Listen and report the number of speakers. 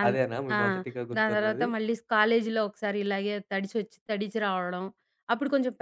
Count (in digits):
2